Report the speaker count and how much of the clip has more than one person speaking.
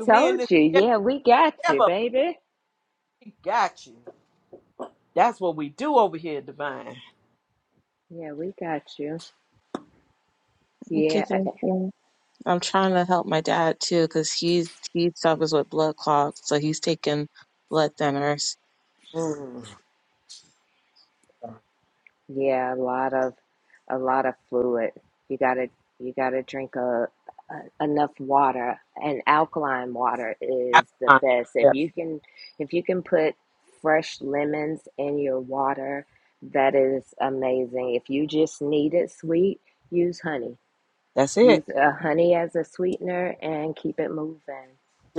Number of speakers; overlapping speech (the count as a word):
three, about 3%